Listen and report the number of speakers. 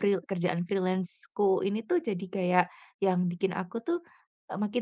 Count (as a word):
one